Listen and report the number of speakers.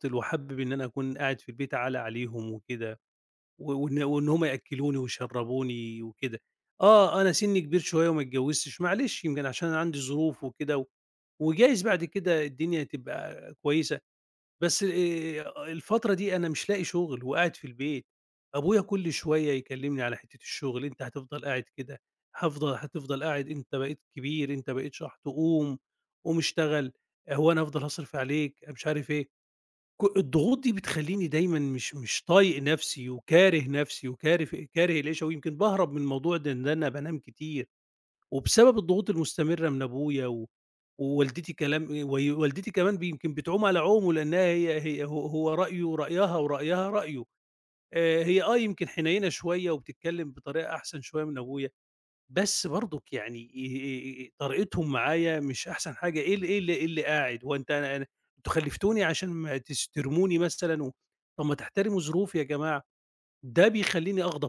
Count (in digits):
1